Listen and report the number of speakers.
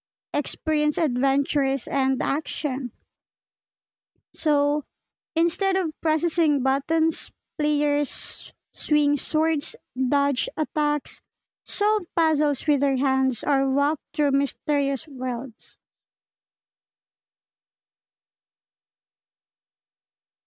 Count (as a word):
one